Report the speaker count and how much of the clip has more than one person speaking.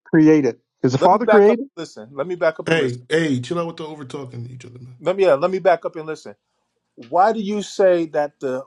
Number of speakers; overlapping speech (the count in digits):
3, about 10%